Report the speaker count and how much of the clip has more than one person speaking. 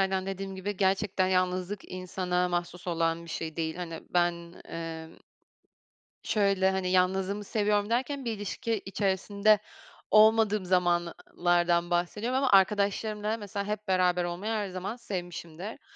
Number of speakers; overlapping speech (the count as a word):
one, no overlap